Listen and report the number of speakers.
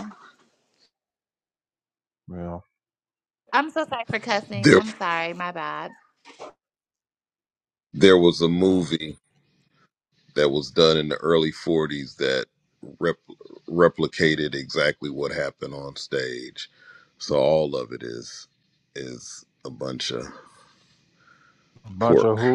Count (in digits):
3